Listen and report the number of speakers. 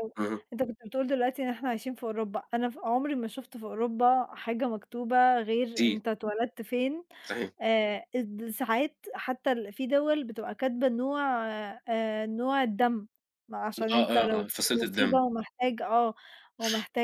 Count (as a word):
two